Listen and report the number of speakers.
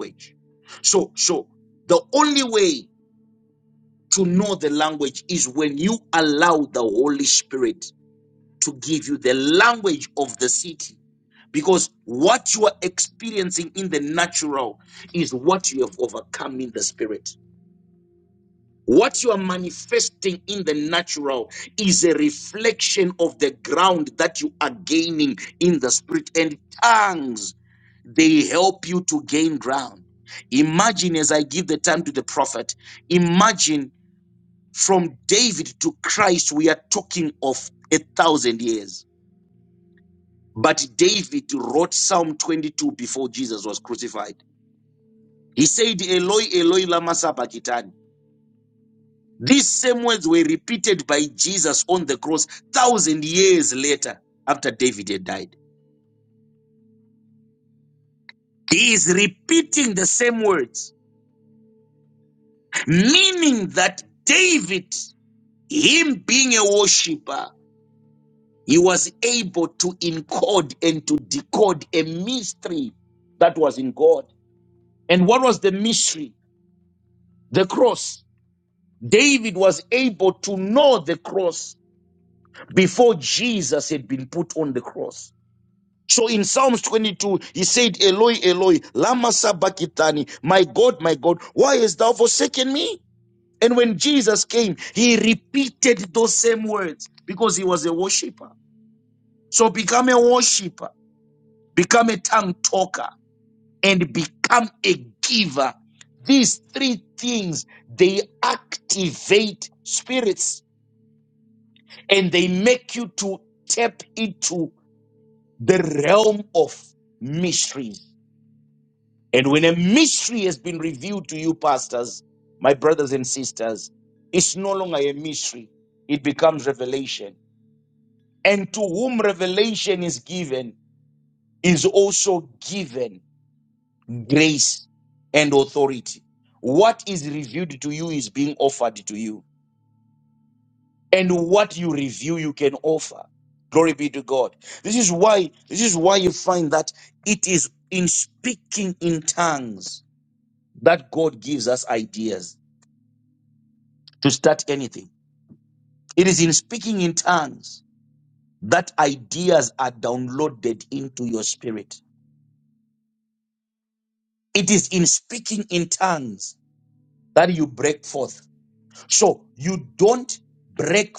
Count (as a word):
one